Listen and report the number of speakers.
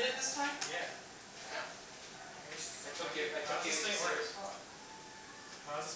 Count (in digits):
2